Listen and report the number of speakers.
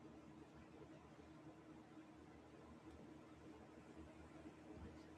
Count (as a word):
zero